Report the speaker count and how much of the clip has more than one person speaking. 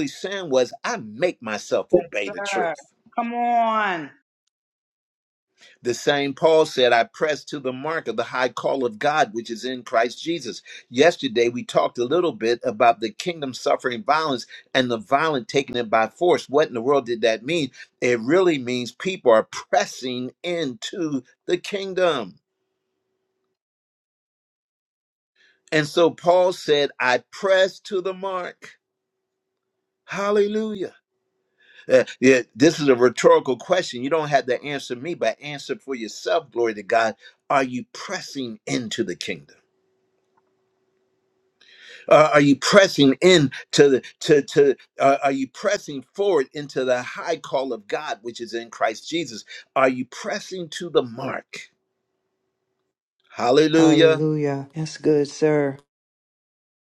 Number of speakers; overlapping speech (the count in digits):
3, about 1%